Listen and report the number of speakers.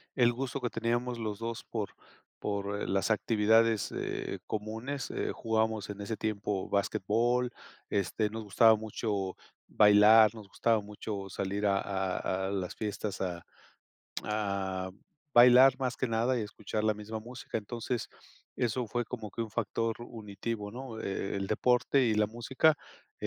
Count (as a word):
one